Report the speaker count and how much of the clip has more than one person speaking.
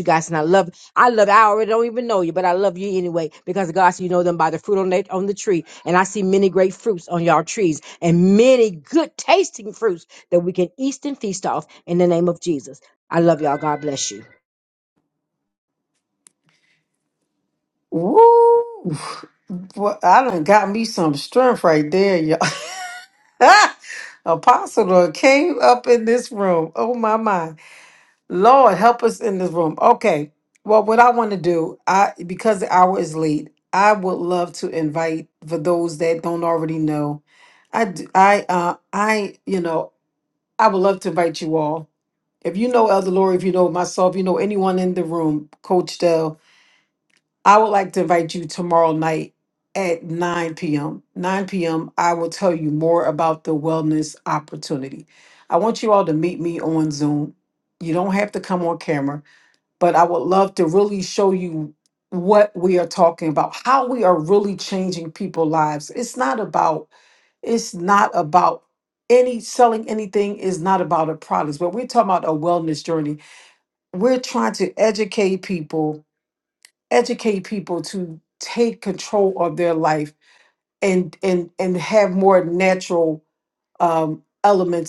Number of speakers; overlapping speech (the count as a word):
two, no overlap